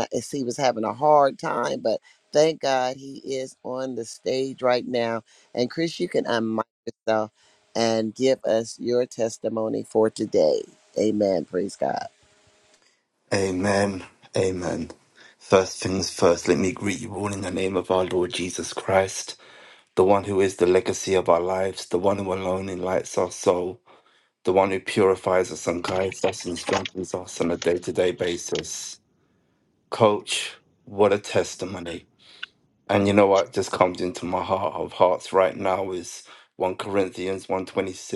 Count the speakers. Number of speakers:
two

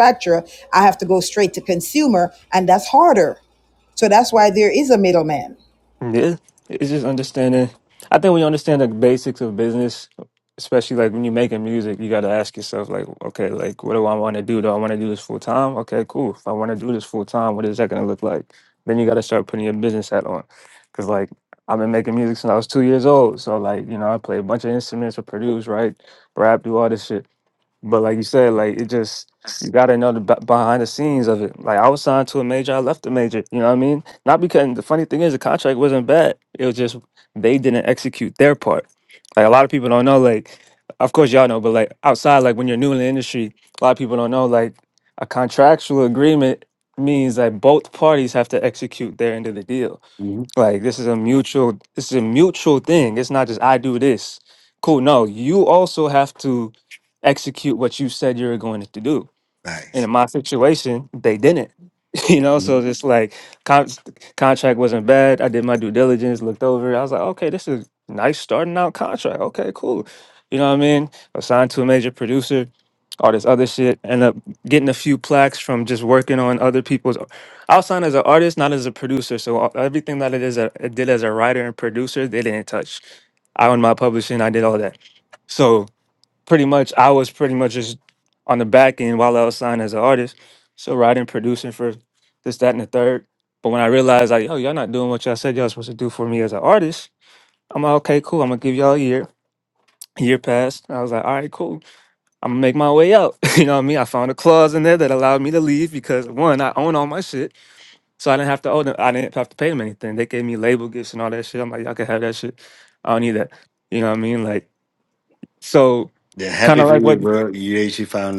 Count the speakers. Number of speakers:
three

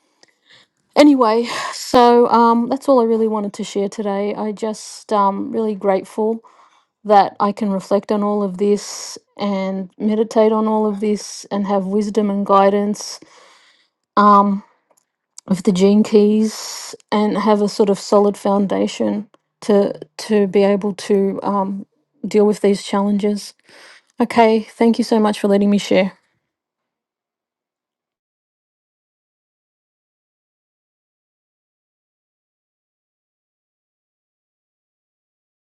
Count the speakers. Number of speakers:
one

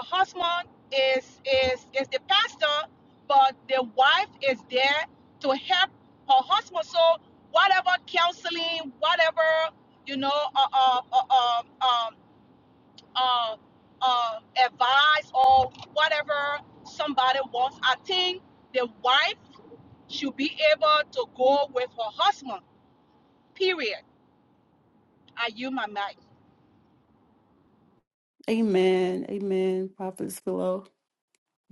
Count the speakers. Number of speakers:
two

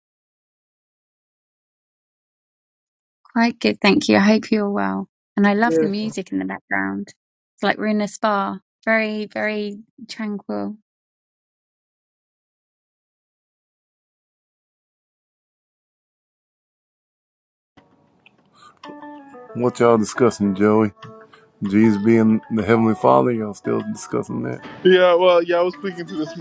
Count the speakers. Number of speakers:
three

